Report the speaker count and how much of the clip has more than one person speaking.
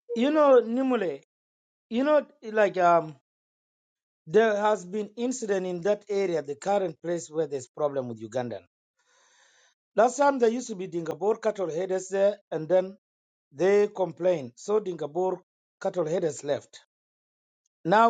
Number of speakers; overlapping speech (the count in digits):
1, no overlap